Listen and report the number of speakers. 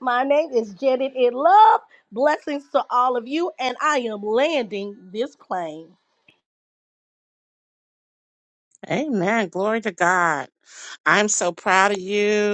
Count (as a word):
two